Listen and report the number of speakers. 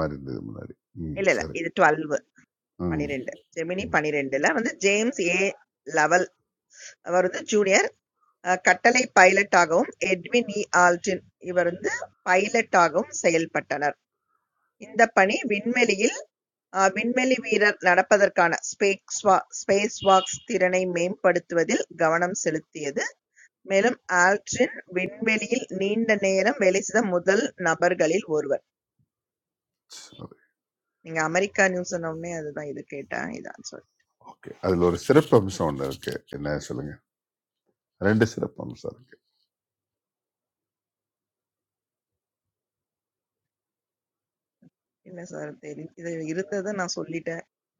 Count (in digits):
2